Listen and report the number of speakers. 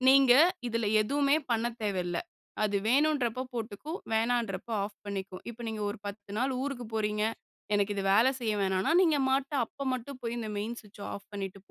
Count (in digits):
1